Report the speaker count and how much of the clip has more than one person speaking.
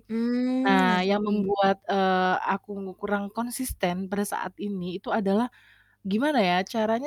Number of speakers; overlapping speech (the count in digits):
2, about 13%